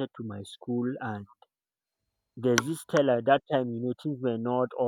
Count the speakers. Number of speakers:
one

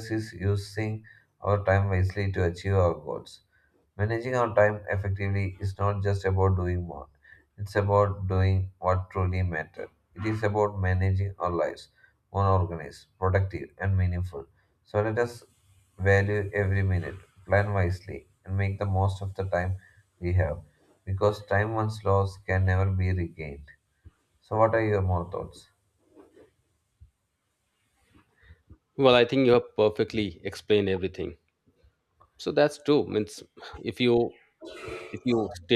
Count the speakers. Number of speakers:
two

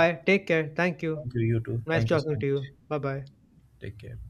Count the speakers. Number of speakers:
two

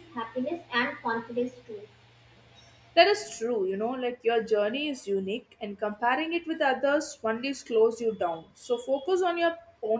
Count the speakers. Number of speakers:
two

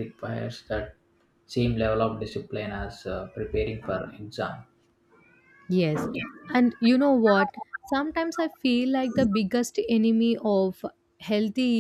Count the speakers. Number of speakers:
two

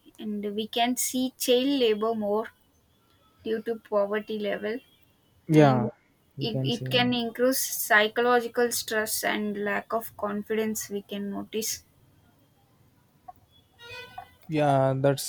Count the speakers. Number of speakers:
two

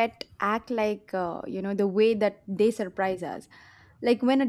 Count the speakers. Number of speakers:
one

